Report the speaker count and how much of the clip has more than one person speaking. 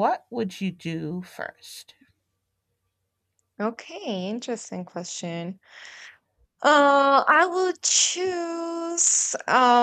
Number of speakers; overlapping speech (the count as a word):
two, no overlap